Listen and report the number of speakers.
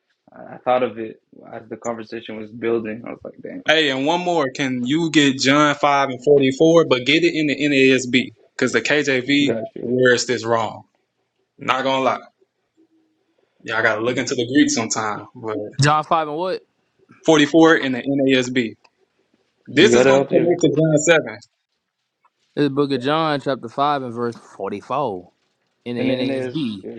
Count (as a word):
three